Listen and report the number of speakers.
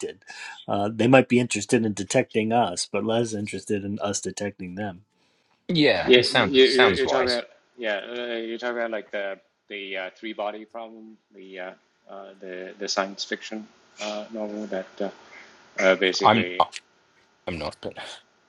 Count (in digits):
3